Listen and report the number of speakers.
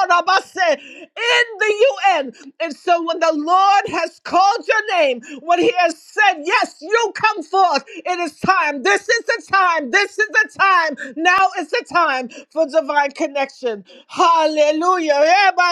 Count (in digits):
1